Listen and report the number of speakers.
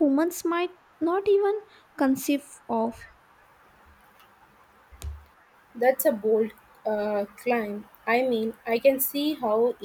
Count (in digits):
2